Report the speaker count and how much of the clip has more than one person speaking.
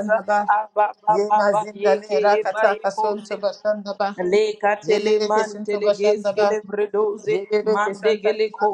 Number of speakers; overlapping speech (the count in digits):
2, about 56%